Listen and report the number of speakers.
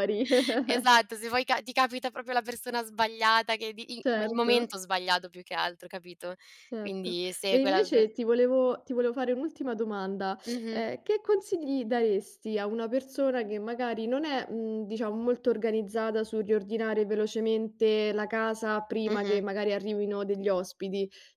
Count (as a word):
two